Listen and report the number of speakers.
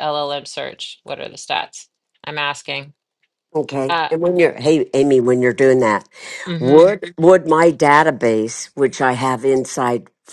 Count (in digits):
2